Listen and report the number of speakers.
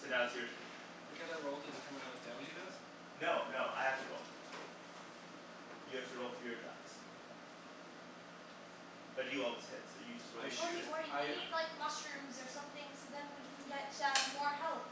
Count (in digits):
3